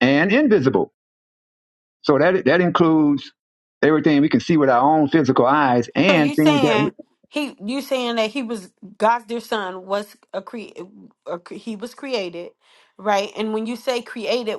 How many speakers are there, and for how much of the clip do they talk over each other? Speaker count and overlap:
2, about 6%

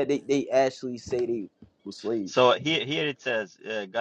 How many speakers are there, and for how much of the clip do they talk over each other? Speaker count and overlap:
2, no overlap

